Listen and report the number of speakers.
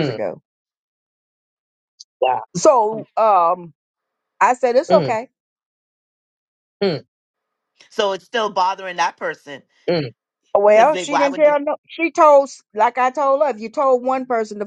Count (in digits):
3